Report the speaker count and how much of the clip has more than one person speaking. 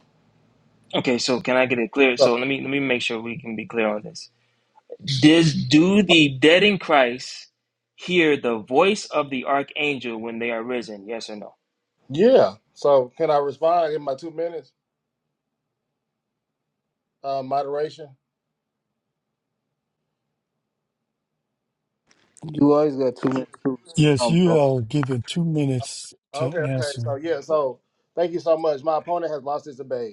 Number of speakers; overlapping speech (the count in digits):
4, about 5%